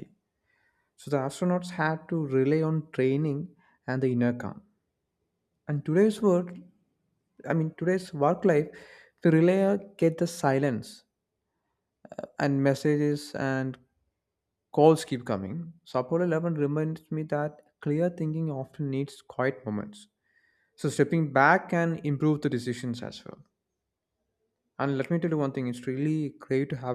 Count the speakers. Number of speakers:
1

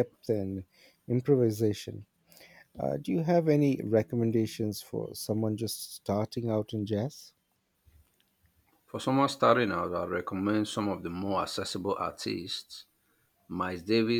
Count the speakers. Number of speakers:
2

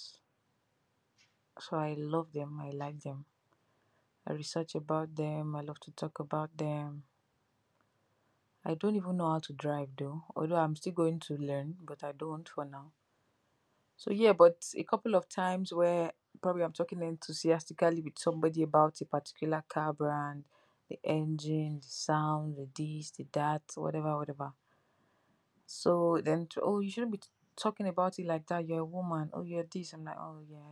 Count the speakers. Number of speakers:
1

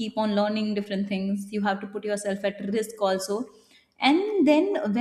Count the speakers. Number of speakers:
1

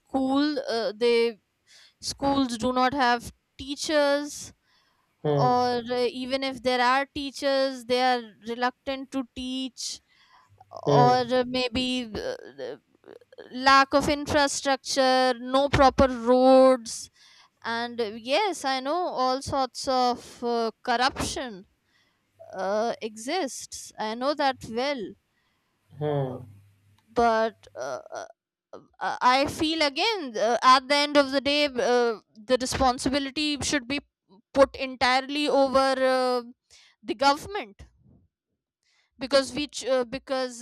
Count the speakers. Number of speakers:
2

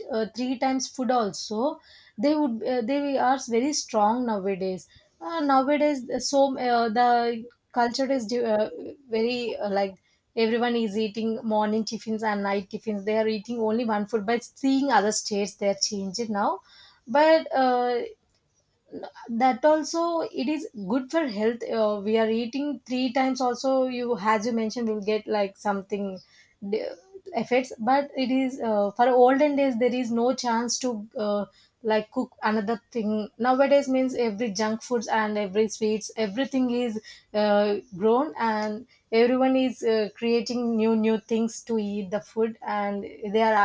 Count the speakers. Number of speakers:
1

